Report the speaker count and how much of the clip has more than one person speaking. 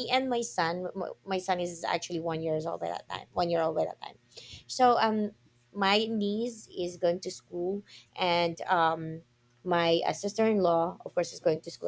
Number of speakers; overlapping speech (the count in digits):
1, no overlap